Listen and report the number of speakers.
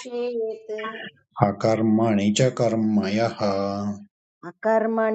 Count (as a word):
two